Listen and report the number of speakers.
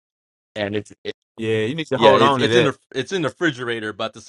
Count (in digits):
2